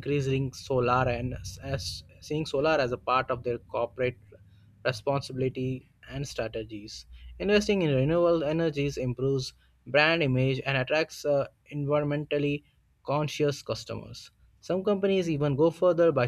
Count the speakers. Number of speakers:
1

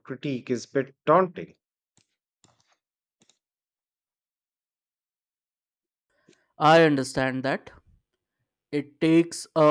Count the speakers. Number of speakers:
2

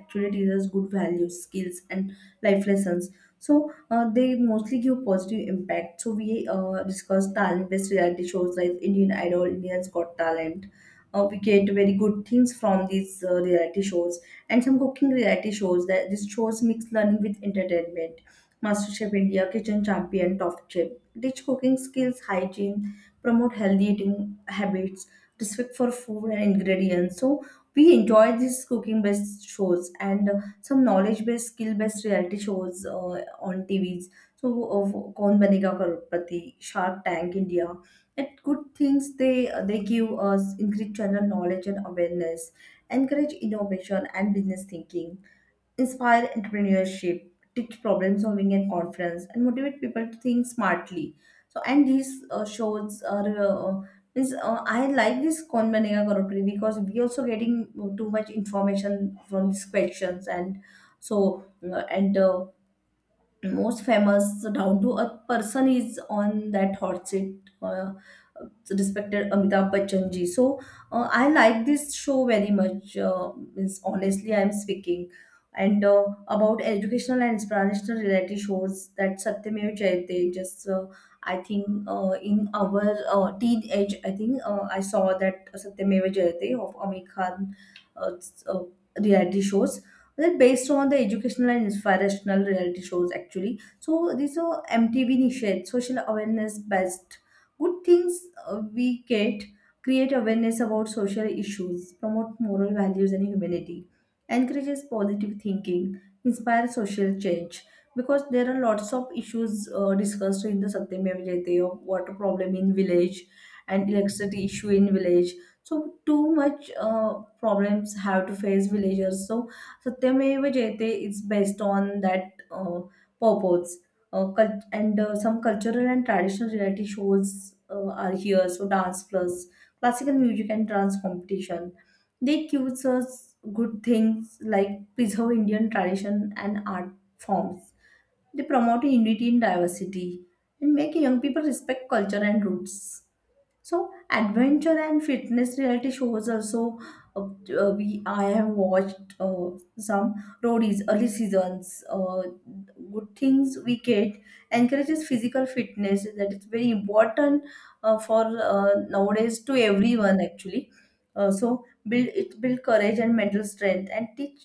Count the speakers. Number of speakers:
1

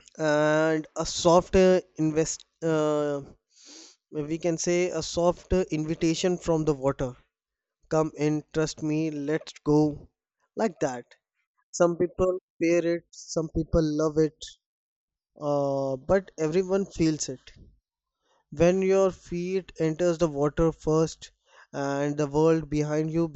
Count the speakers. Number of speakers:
1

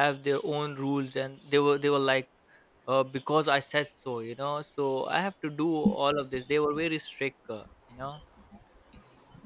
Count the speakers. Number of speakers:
1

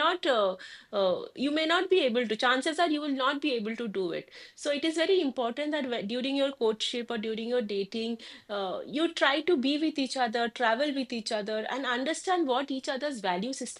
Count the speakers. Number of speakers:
1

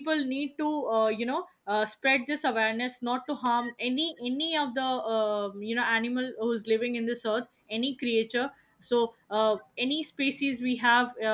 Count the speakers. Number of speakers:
1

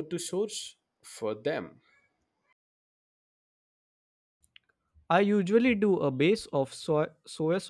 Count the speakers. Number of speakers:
2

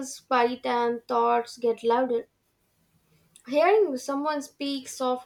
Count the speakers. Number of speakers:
1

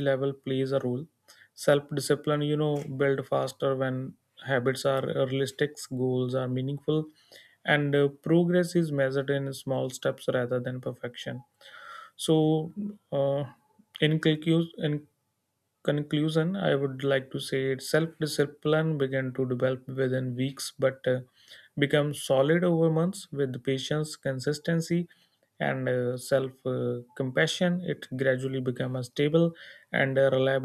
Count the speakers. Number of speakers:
1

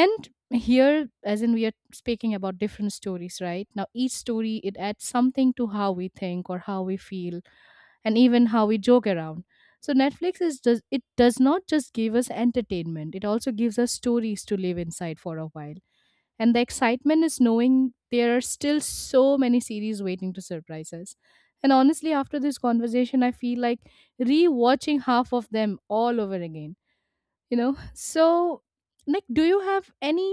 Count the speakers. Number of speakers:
1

